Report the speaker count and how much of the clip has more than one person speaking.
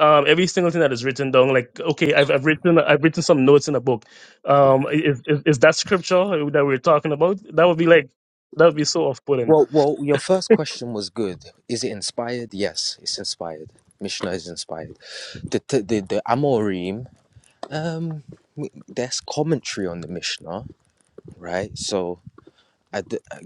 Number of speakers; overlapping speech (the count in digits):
2, under 1%